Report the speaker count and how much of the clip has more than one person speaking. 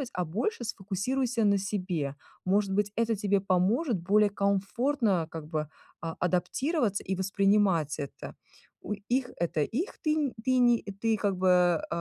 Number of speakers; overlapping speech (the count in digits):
1, no overlap